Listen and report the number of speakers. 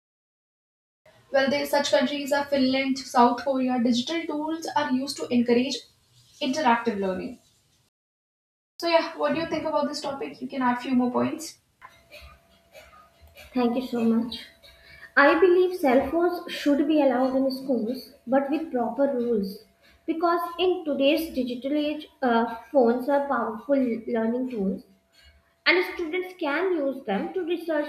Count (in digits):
2